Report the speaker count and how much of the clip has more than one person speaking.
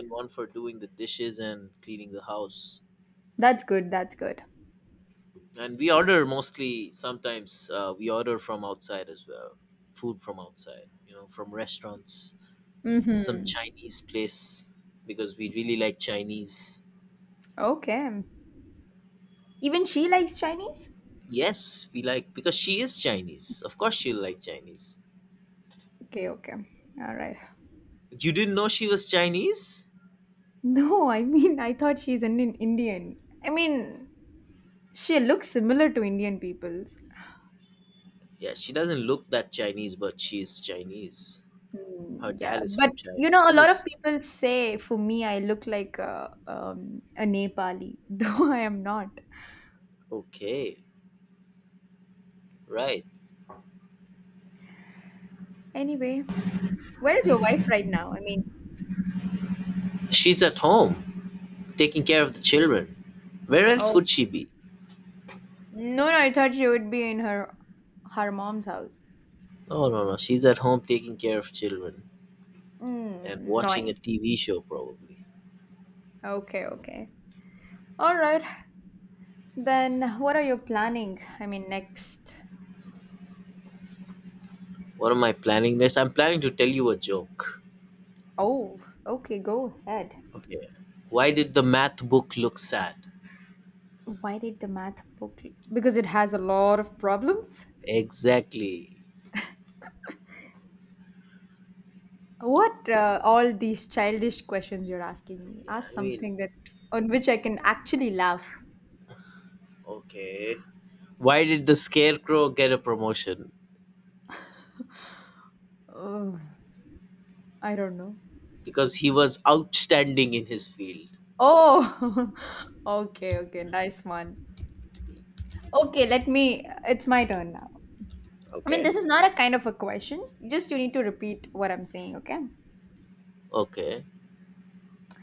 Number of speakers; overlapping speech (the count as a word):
two, about 3%